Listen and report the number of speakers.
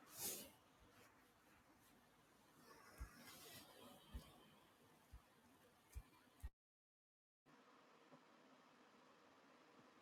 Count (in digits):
0